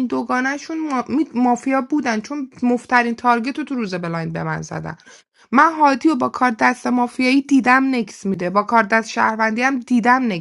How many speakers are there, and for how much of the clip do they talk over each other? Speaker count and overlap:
1, no overlap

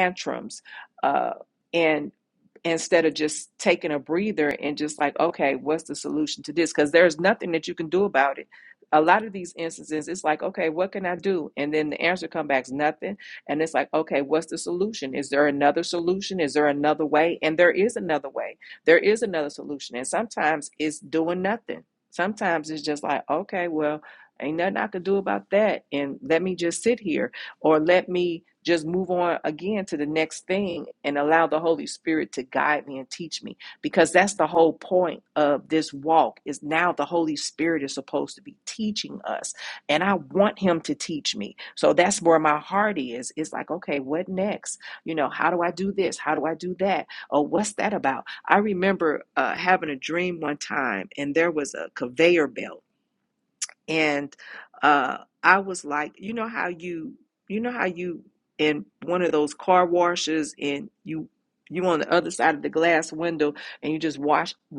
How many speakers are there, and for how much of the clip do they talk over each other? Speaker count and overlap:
1, no overlap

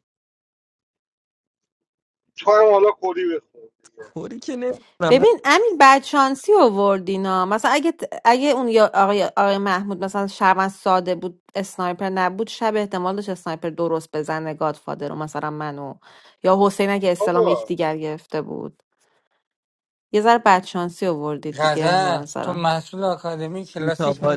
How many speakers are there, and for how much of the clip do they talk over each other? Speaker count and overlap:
4, about 9%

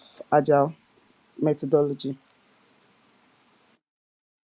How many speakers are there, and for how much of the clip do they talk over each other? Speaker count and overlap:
1, no overlap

